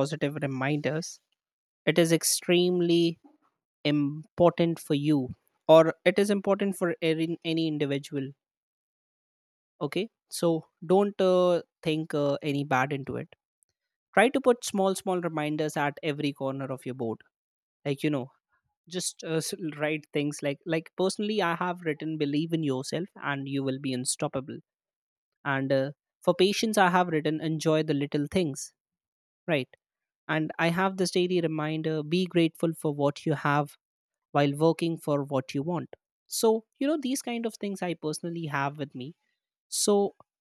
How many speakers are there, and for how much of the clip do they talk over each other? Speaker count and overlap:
1, no overlap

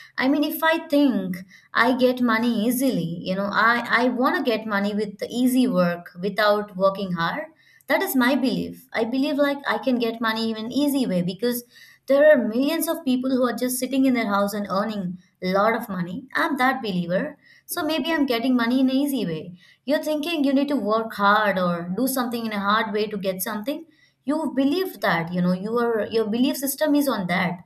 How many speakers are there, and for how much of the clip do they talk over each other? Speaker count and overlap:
1, no overlap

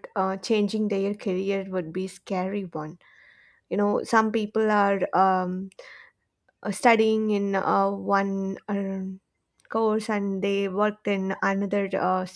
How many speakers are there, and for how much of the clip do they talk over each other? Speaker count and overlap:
1, no overlap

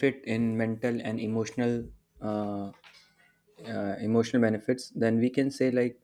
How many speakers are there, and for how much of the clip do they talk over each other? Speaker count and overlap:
1, no overlap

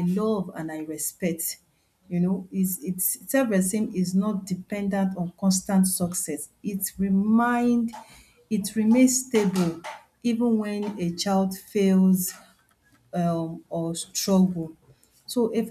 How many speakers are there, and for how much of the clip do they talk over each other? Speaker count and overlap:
1, no overlap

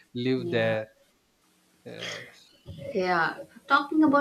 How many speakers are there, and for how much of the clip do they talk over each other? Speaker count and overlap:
2, about 10%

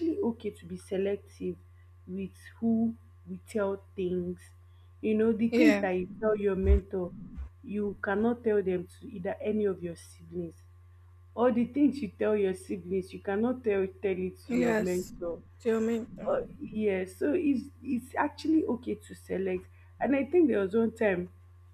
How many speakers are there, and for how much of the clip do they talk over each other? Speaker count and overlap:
2, about 3%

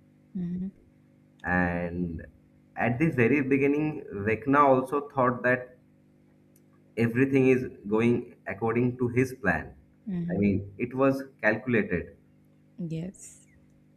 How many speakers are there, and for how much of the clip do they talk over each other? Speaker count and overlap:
2, about 1%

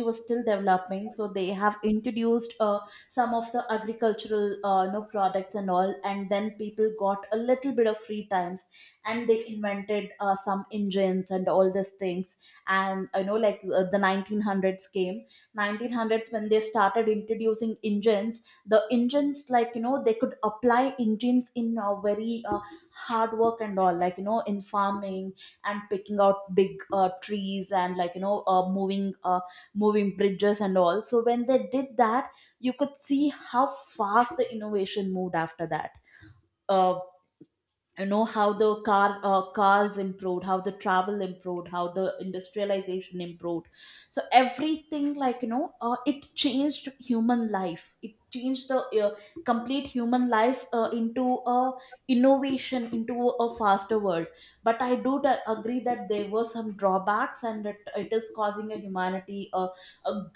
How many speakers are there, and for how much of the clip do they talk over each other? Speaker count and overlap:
1, no overlap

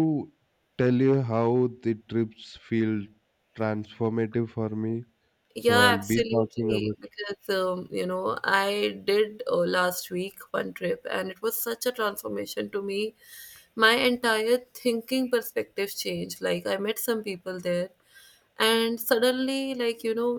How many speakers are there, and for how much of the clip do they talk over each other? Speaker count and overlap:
2, about 6%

